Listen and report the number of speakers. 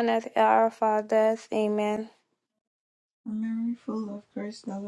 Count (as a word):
two